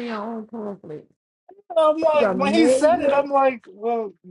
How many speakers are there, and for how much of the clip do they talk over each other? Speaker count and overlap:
2, about 27%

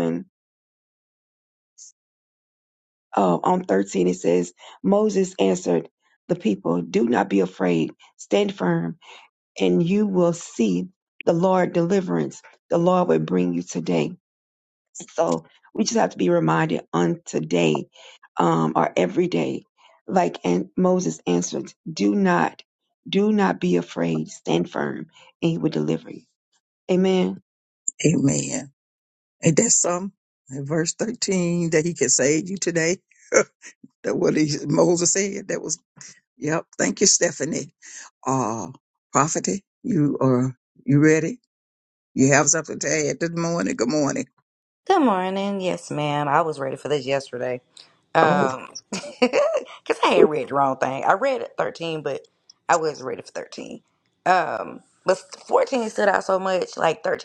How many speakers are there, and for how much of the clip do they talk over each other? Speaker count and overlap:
3, about 1%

